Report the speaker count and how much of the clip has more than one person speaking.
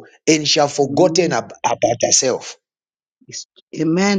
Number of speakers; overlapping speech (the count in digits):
2, about 13%